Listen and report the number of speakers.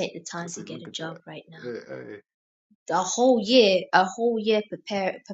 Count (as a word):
two